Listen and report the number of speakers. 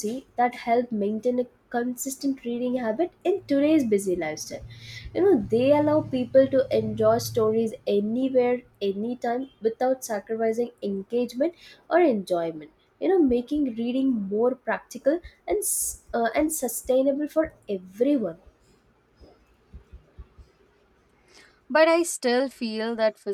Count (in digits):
2